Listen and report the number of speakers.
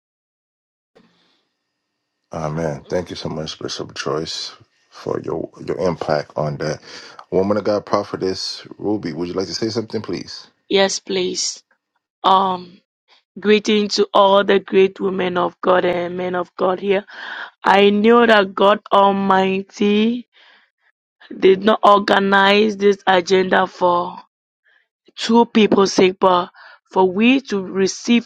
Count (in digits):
2